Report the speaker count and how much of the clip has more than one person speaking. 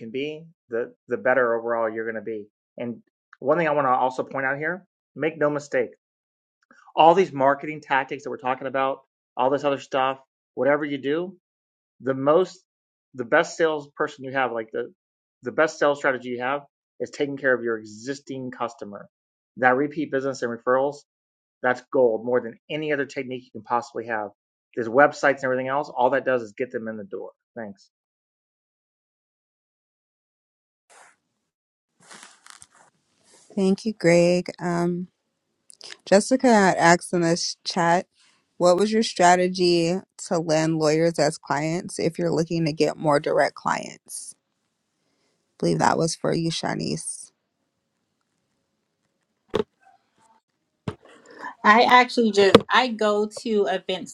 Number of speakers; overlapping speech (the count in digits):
3, no overlap